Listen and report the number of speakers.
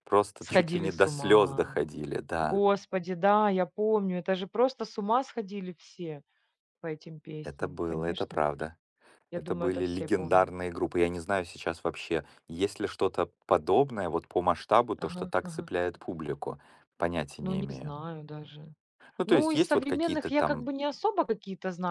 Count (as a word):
two